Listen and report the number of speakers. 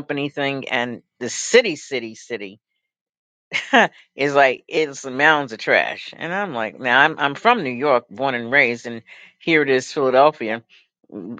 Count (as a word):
one